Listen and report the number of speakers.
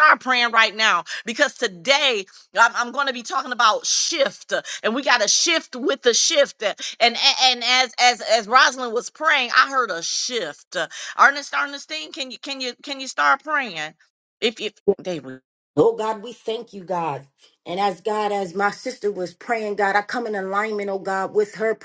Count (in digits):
2